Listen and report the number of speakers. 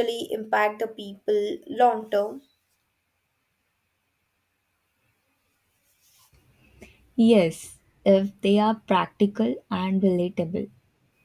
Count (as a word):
two